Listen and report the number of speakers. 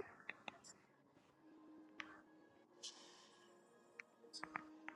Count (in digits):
0